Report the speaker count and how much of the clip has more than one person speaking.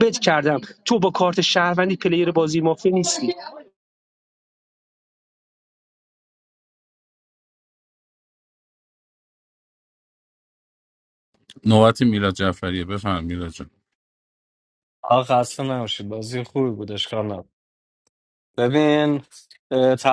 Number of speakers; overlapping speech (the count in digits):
3, no overlap